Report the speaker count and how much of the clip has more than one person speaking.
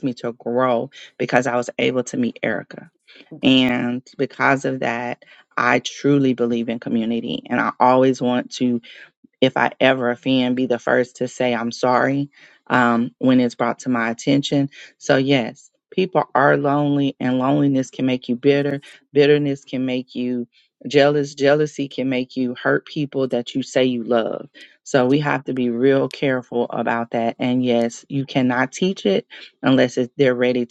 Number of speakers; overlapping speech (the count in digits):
1, no overlap